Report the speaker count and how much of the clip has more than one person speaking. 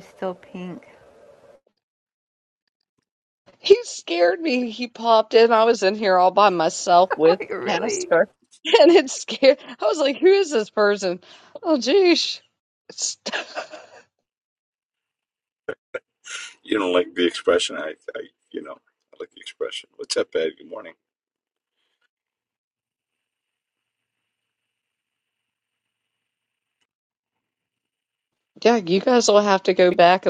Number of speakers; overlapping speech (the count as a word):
three, about 3%